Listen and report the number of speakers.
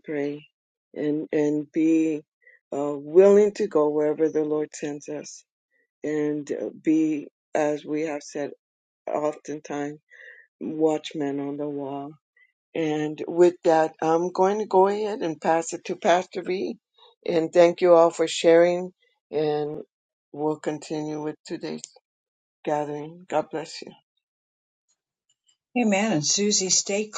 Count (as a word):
two